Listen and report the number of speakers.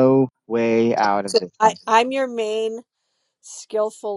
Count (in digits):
2